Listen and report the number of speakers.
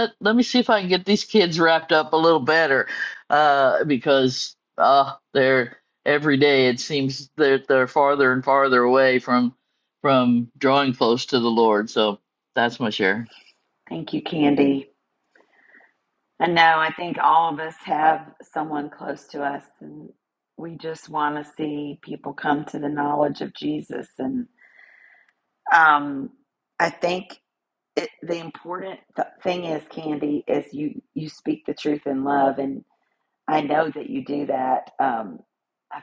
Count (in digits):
2